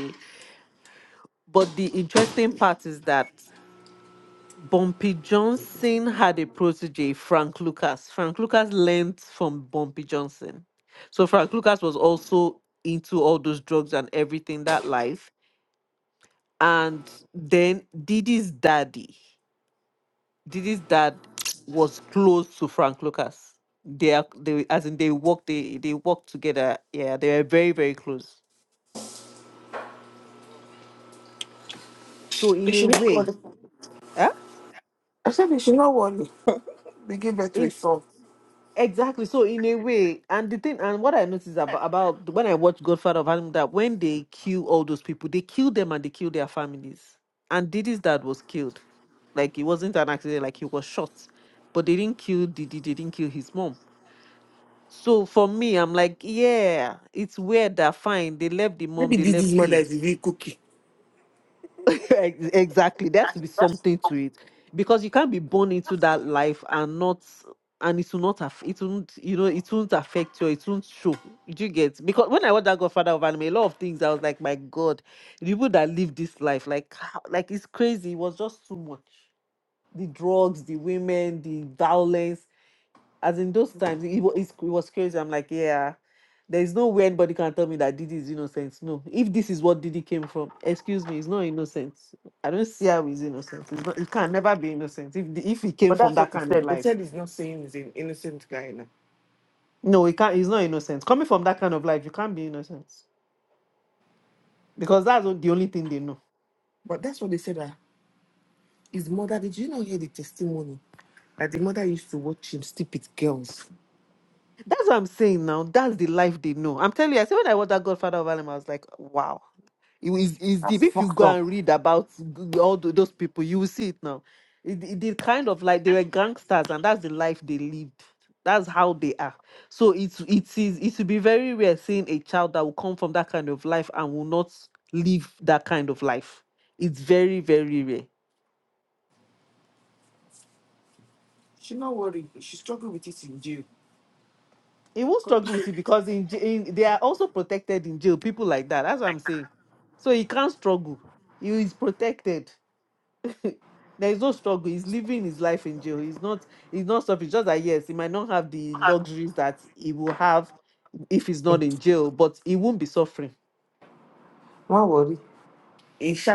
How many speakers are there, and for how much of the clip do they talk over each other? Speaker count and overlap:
2, about 2%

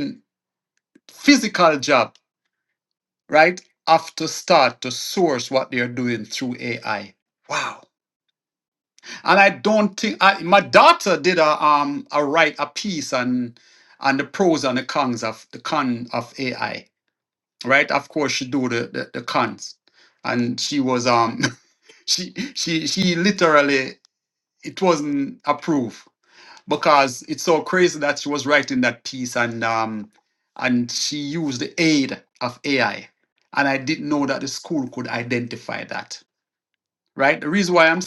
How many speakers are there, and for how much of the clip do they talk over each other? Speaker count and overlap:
1, no overlap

